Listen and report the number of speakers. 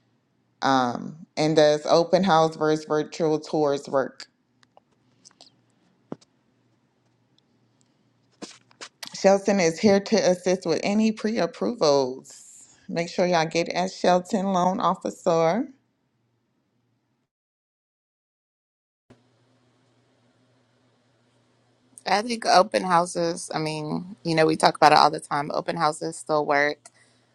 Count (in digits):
2